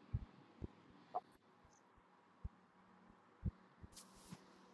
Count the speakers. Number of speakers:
0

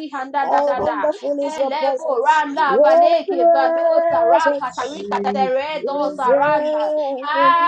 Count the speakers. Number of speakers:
2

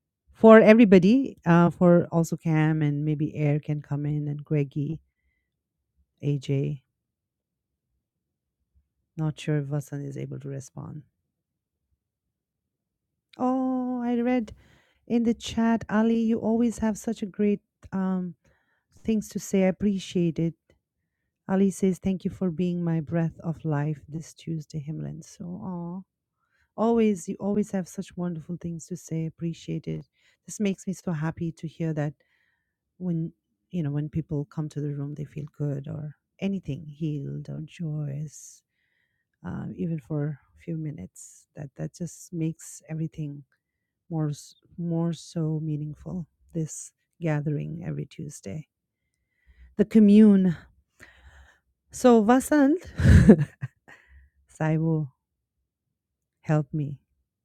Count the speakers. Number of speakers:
1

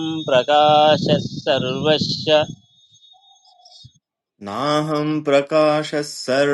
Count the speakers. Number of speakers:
2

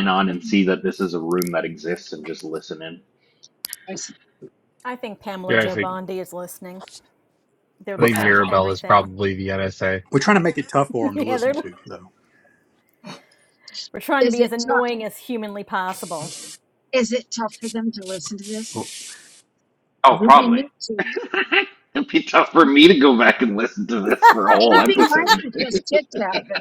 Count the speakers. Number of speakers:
5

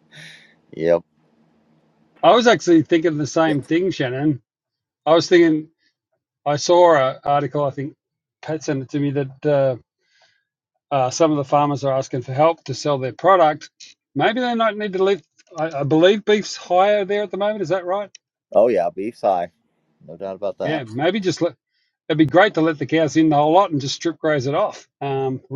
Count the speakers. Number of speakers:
2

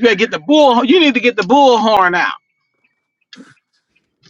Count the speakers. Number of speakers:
1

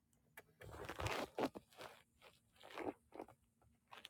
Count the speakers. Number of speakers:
0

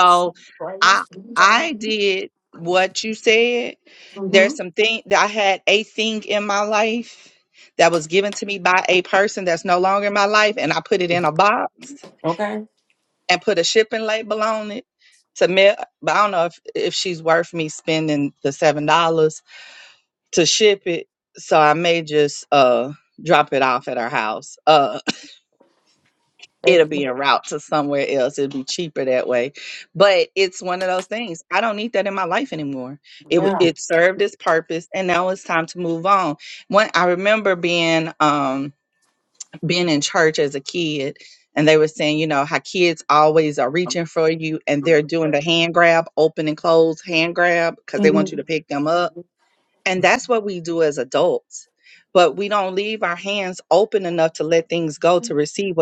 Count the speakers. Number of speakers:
2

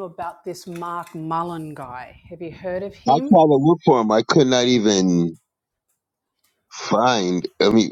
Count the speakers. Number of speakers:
2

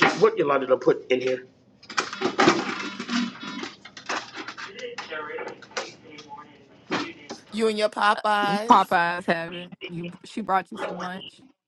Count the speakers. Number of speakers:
3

